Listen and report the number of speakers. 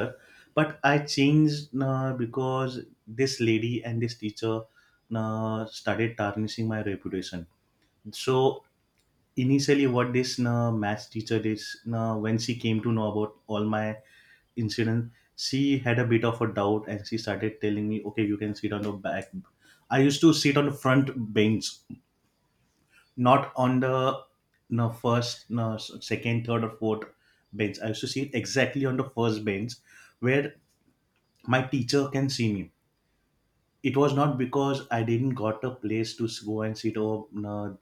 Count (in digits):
1